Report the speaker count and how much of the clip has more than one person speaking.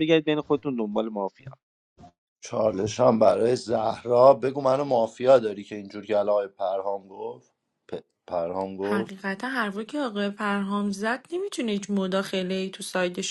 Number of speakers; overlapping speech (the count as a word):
three, about 1%